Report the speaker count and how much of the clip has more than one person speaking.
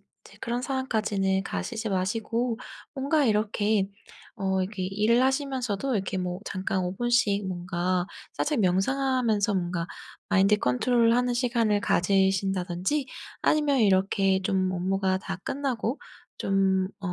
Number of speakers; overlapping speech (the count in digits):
1, no overlap